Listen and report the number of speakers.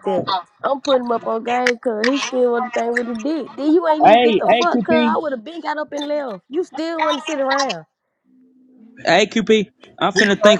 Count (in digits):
2